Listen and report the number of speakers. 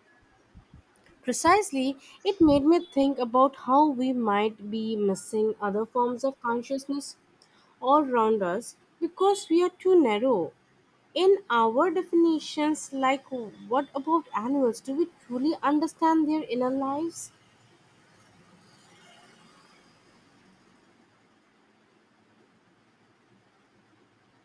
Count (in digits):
1